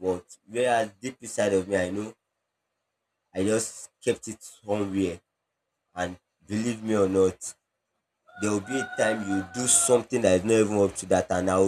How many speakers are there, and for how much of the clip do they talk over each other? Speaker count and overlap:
one, no overlap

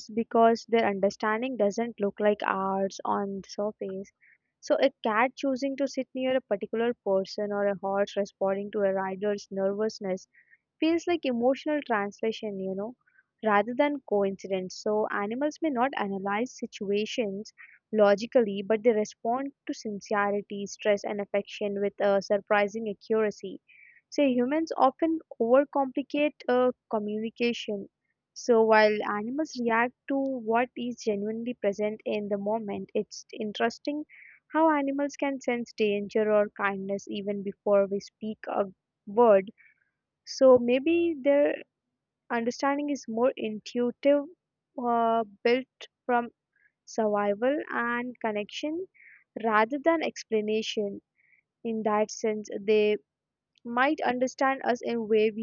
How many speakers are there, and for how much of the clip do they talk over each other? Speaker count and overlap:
one, no overlap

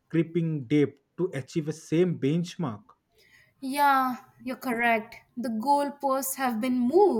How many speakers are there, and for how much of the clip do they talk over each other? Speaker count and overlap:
two, no overlap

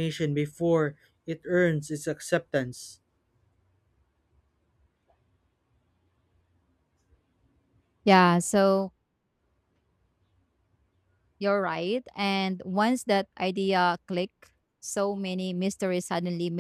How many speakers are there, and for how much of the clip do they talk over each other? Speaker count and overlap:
two, no overlap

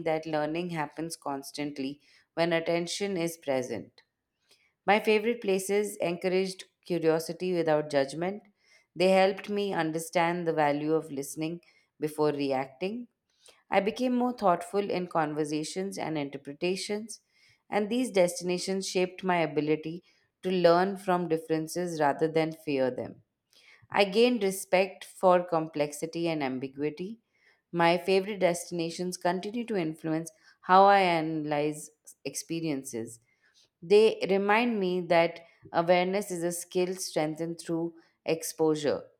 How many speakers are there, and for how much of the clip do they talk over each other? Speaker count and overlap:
one, no overlap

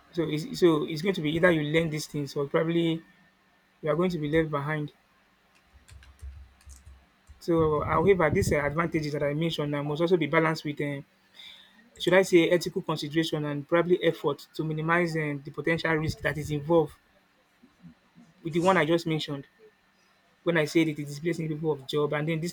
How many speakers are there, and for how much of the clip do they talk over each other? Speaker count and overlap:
one, no overlap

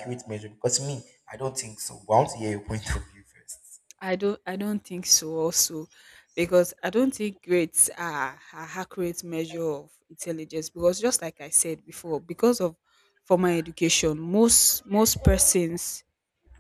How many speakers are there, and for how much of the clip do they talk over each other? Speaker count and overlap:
two, no overlap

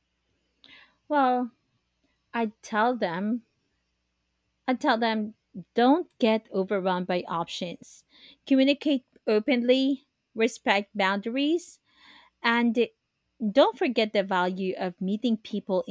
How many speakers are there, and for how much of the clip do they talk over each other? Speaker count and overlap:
one, no overlap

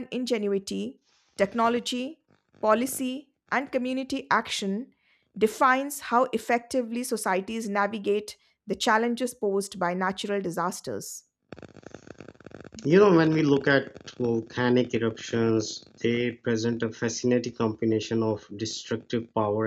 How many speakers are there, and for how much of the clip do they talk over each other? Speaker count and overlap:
two, no overlap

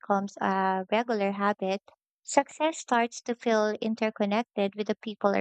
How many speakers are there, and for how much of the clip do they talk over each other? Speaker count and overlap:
one, no overlap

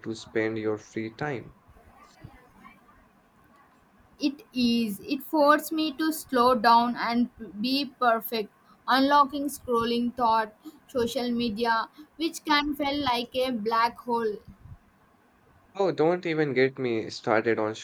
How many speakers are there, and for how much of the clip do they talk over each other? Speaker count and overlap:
two, no overlap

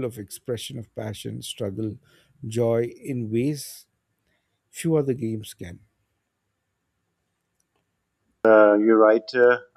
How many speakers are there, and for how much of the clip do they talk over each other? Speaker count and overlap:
two, no overlap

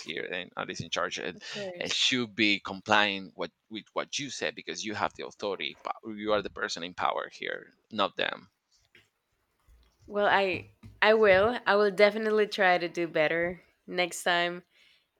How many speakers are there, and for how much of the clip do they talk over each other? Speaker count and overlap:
two, about 1%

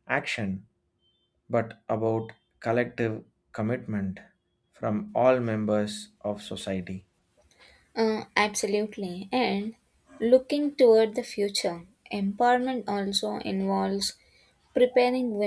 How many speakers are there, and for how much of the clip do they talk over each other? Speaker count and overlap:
two, no overlap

